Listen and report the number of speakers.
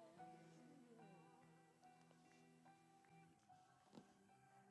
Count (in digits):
0